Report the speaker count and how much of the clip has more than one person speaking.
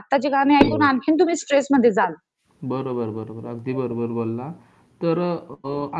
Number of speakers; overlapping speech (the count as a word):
two, no overlap